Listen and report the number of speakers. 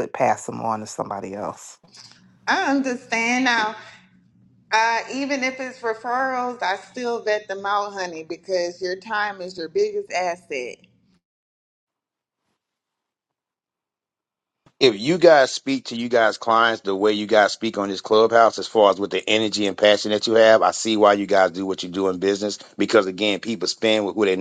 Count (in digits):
3